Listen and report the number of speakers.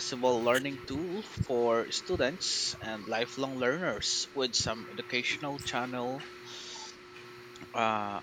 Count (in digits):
1